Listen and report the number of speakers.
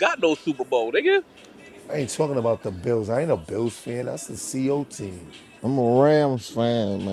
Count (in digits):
3